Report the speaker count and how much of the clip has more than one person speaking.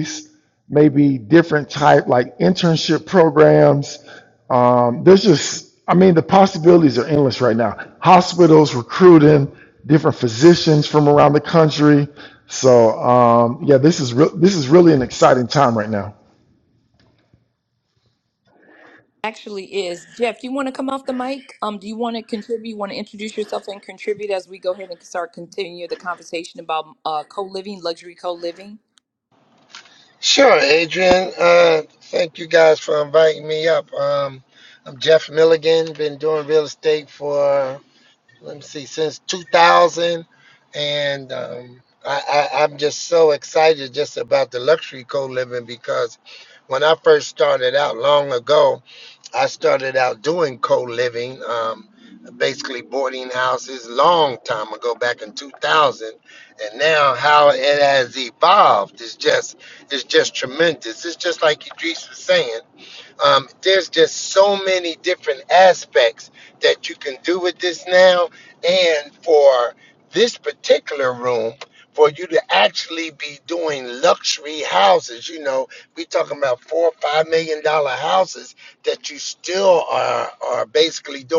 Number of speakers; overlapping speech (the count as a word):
three, no overlap